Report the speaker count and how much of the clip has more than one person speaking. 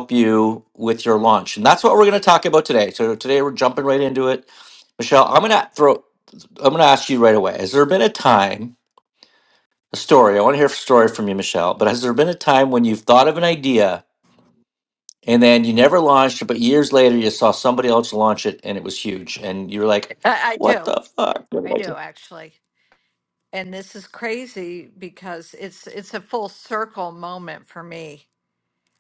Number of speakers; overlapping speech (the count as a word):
two, about 2%